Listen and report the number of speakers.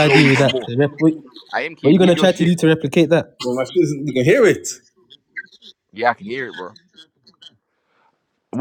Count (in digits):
3